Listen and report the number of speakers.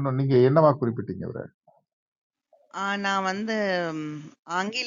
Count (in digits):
2